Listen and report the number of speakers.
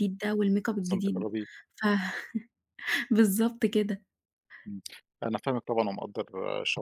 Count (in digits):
2